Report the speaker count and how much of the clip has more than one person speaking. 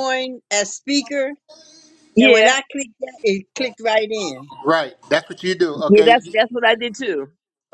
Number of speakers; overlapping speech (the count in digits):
3, about 11%